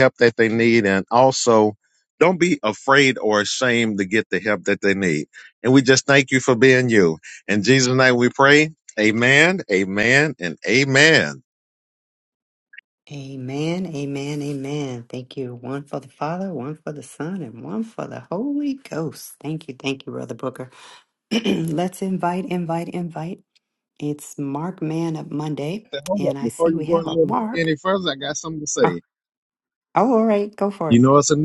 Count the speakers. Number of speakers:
2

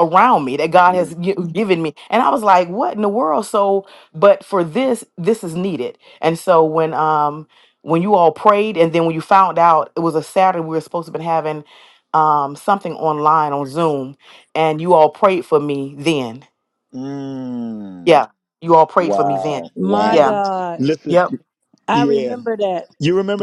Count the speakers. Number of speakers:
3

